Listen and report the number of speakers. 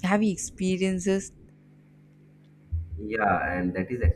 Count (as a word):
two